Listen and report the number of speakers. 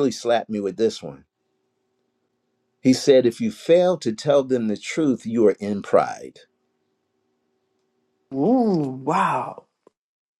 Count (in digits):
2